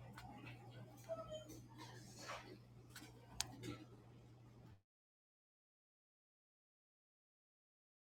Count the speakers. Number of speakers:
zero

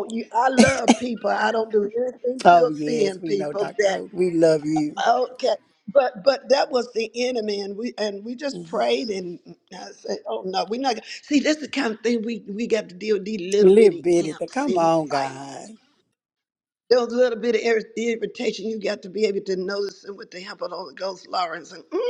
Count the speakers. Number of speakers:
two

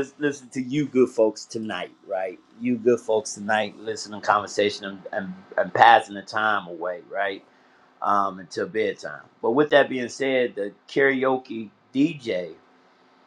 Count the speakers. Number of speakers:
one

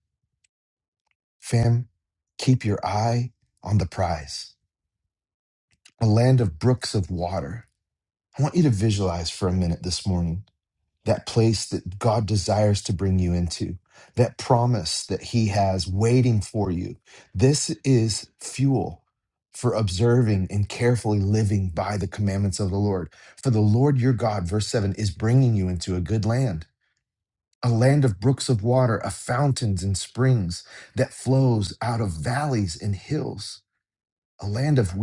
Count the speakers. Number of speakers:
one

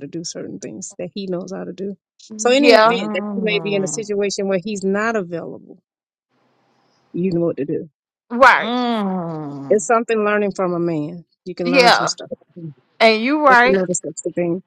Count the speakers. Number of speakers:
three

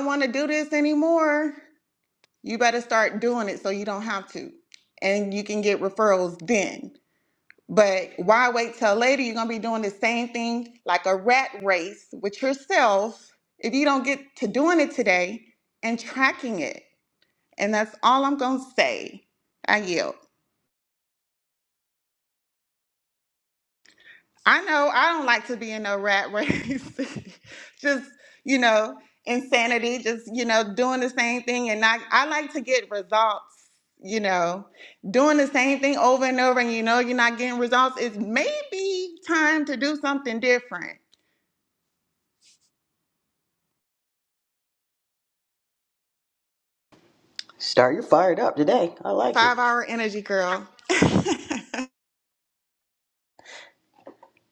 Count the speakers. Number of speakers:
two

